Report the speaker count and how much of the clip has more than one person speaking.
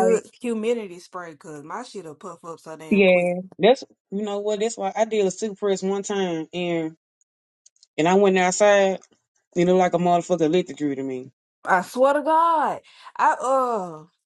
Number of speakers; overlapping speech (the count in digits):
2, about 4%